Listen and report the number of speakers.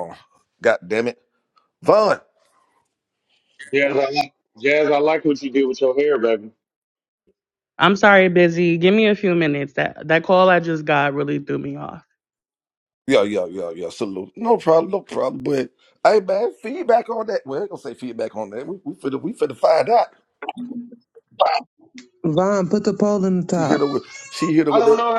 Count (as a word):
four